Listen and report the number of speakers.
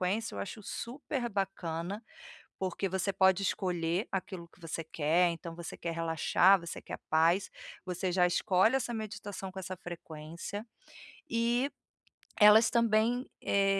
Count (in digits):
1